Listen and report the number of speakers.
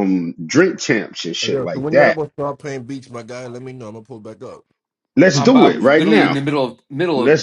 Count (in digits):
3